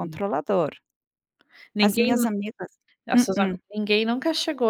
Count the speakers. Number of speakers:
2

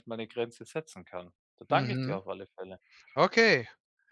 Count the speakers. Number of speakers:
2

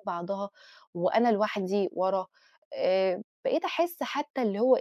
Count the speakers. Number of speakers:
1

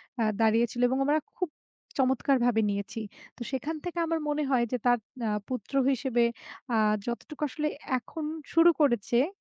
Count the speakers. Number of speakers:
1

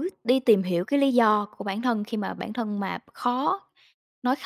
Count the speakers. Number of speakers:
1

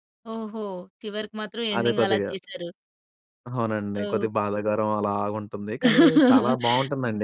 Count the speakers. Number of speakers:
2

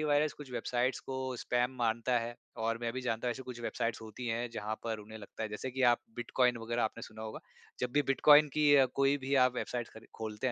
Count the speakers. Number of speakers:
1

